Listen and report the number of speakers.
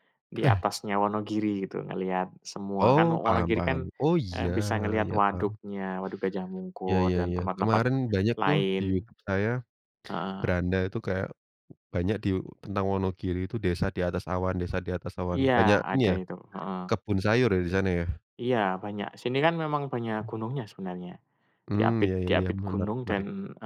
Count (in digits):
2